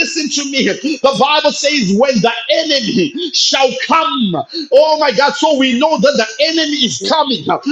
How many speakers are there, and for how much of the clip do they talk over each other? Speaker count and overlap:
1, no overlap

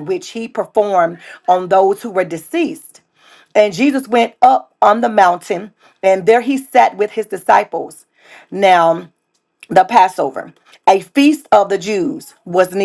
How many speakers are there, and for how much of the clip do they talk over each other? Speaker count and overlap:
1, no overlap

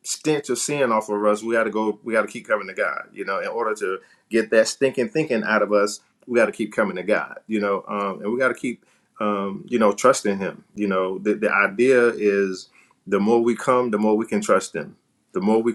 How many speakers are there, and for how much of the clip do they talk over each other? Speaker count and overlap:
1, no overlap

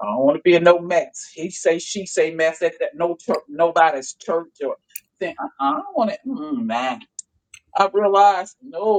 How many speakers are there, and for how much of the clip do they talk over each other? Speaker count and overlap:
1, no overlap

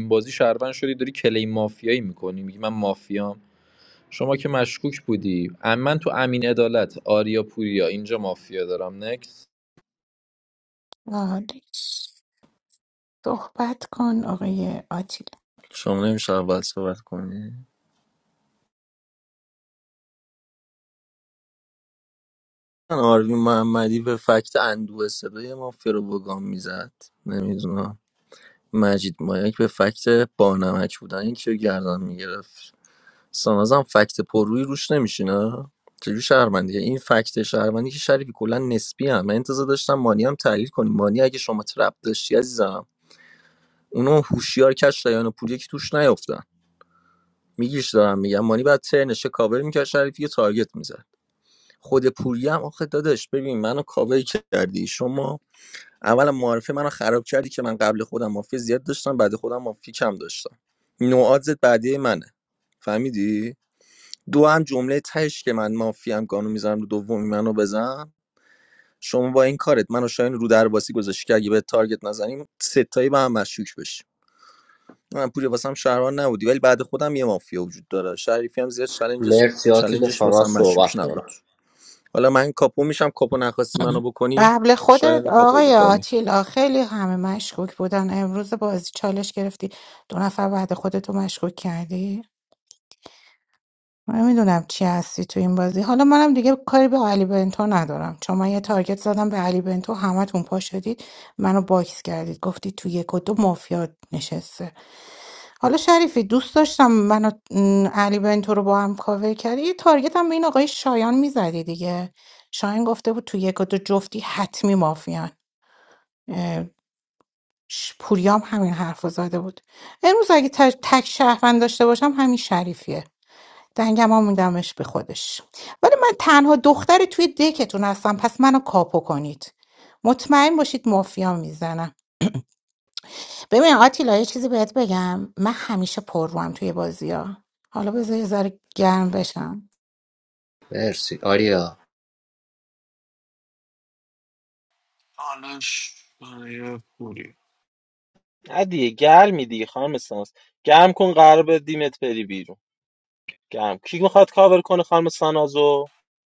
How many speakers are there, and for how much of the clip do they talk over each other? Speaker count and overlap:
6, about 2%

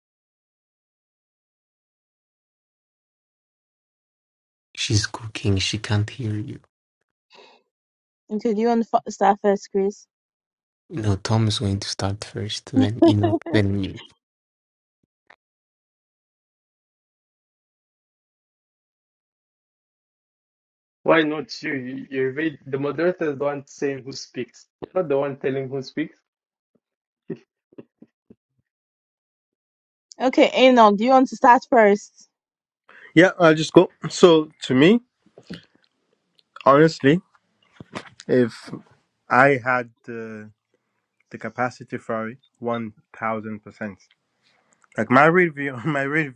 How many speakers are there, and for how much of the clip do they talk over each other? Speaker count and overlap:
4, no overlap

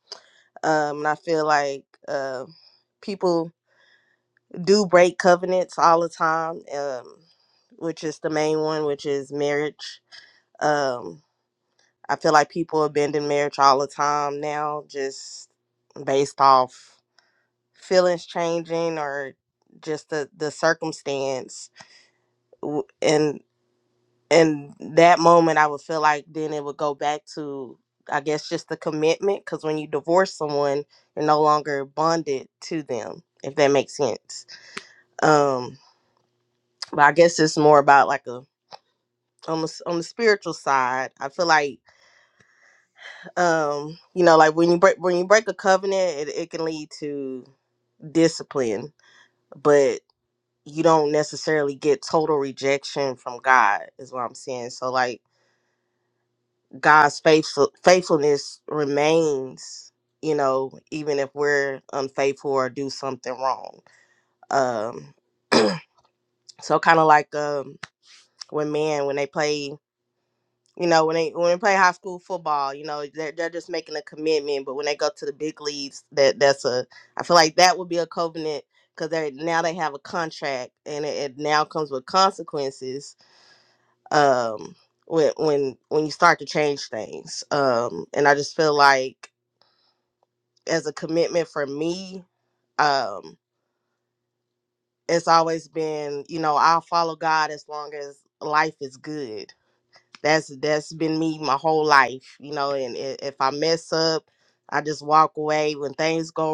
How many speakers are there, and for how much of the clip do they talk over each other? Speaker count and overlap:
1, no overlap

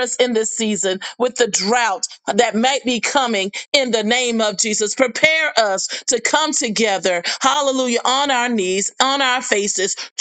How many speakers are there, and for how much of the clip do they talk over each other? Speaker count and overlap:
1, no overlap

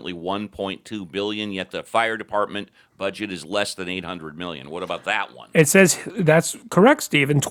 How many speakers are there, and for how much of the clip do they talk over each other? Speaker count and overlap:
2, no overlap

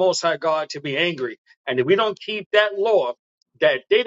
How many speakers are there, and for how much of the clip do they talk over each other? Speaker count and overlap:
1, no overlap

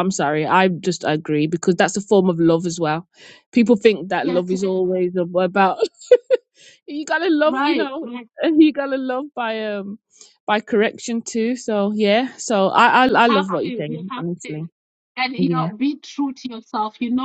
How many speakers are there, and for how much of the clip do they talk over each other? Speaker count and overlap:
2, about 19%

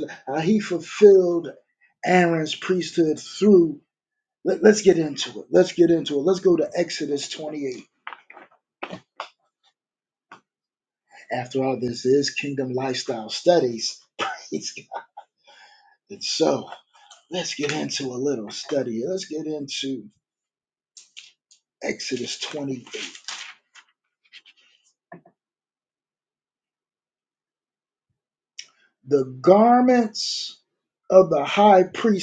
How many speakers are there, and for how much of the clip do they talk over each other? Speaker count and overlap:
1, no overlap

